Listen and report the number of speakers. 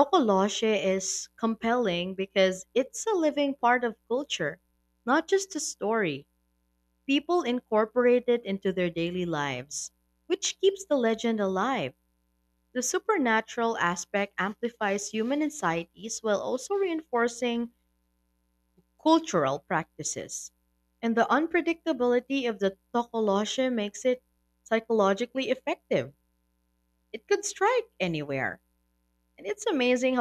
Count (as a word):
one